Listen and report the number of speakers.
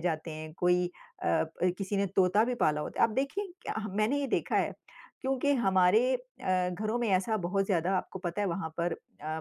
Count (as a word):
one